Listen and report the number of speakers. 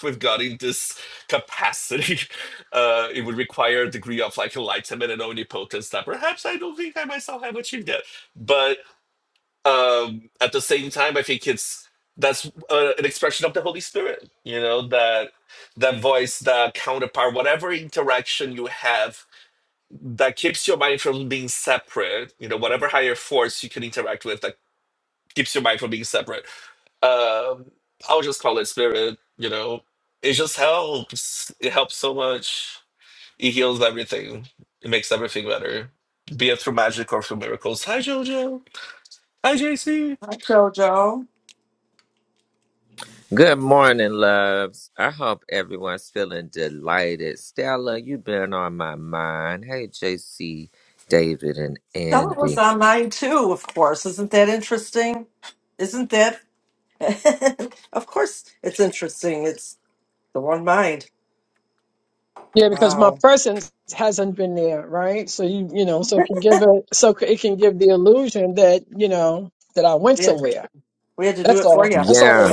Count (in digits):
4